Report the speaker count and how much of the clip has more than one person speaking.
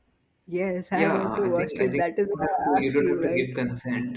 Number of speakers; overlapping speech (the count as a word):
two, about 62%